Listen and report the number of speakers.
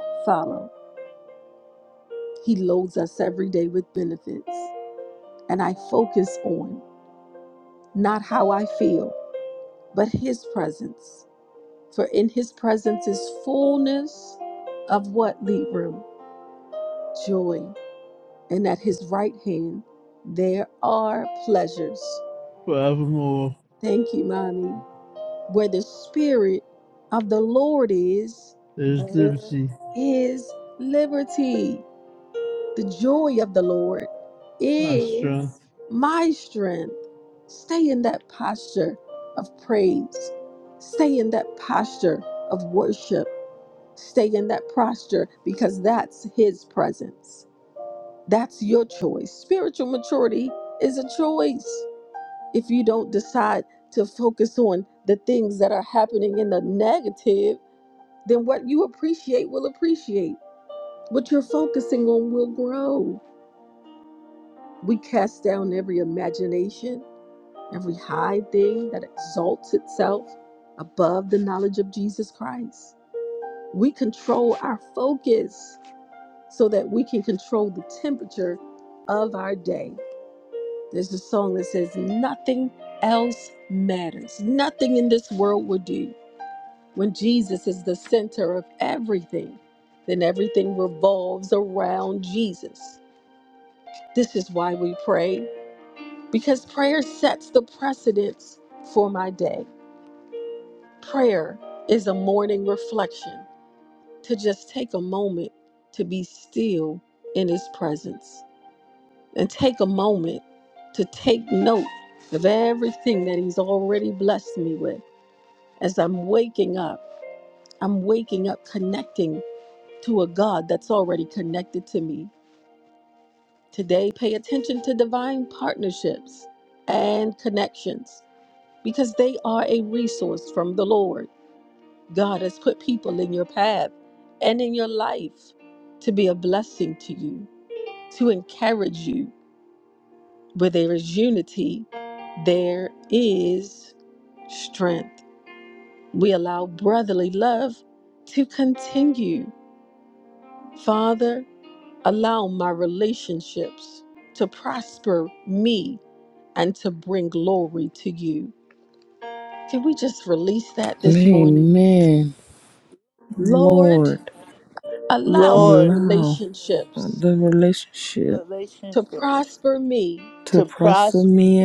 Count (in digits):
4